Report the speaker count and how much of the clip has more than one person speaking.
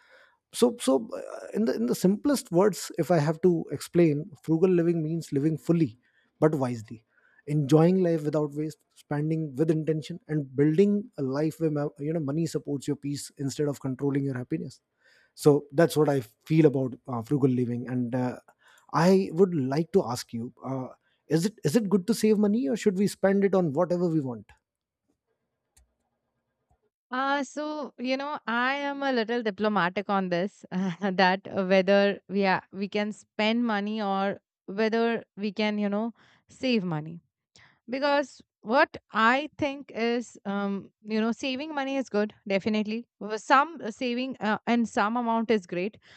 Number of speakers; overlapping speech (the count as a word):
two, no overlap